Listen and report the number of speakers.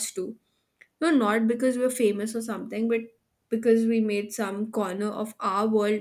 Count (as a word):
one